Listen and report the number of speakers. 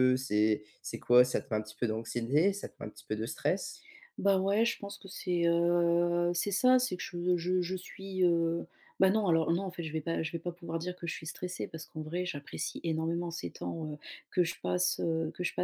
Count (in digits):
2